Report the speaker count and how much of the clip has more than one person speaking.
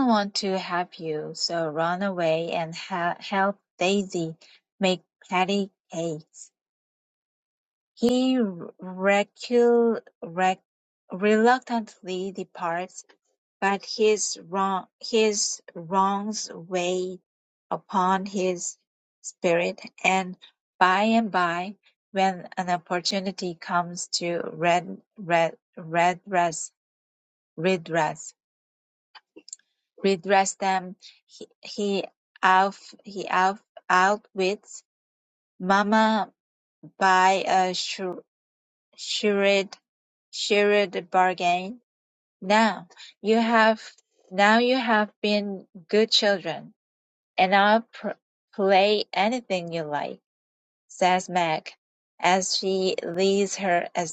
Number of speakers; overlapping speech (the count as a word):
one, no overlap